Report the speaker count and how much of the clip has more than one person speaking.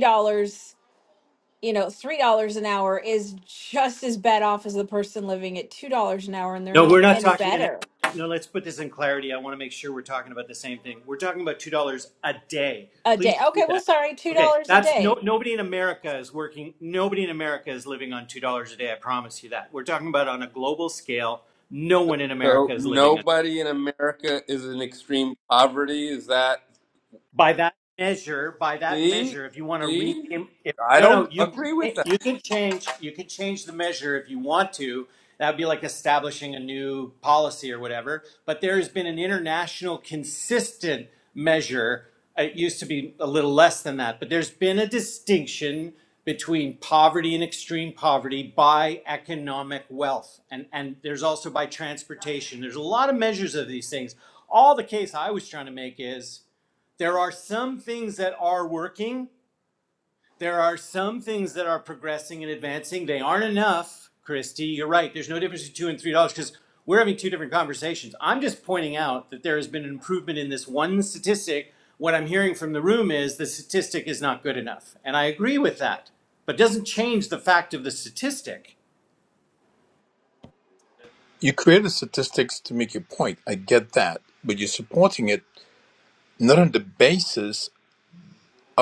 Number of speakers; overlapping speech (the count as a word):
four, about 6%